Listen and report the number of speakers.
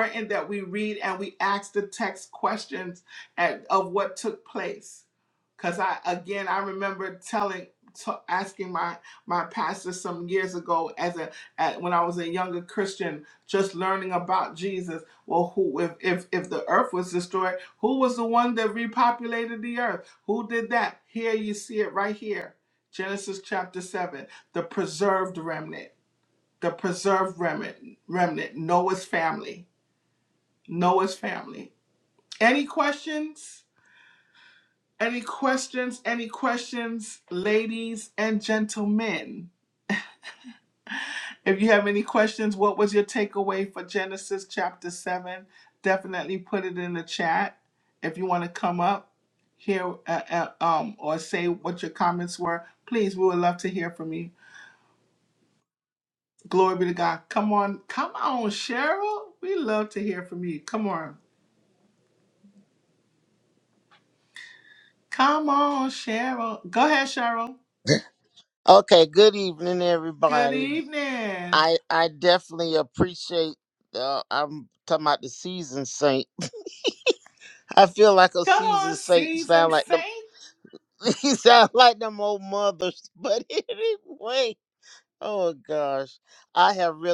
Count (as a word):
two